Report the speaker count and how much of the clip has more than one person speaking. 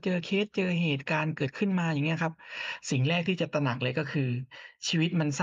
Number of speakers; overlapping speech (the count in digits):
1, no overlap